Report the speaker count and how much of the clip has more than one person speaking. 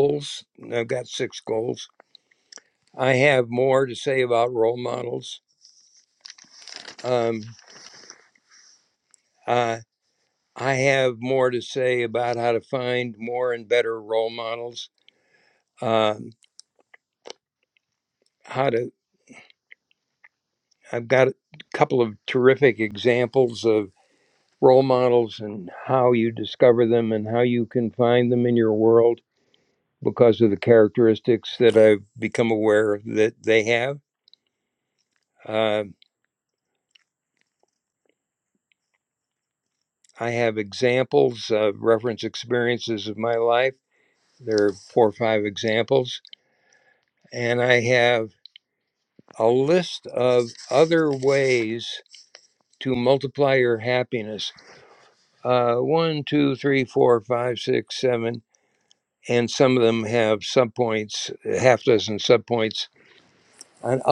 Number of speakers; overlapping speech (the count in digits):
1, no overlap